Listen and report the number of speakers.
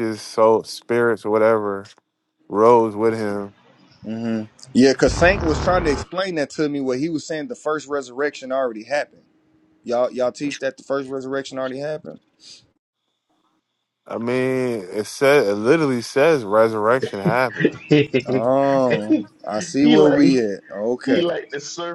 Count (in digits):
3